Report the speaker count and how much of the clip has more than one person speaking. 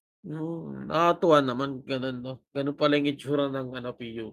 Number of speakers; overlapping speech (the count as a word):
one, no overlap